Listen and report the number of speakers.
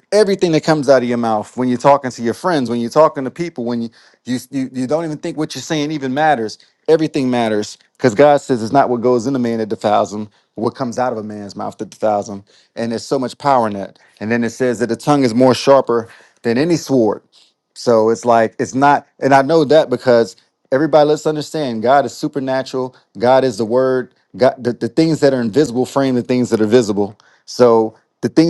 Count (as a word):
one